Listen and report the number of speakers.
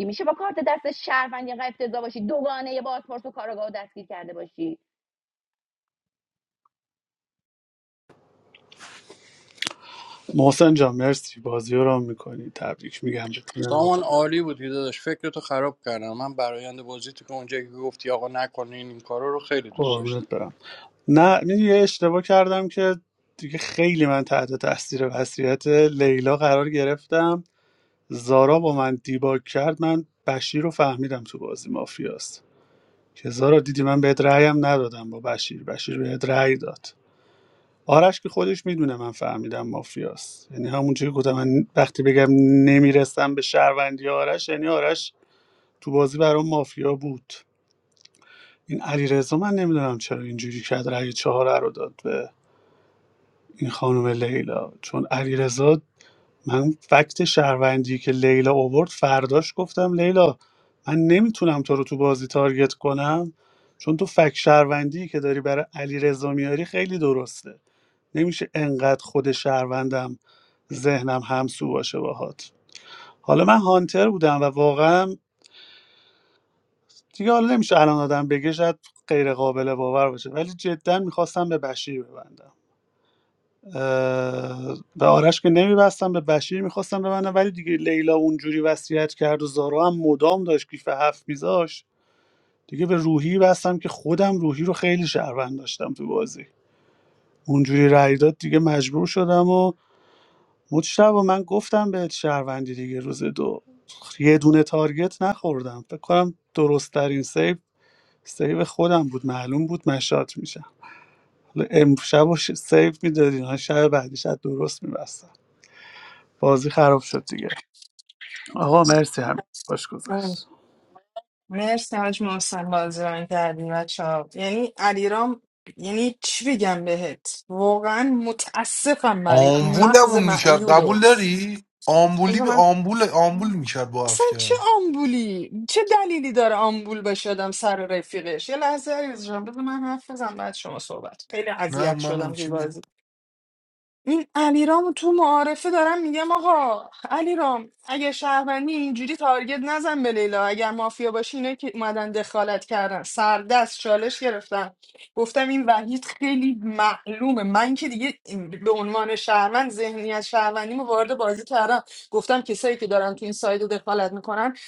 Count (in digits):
5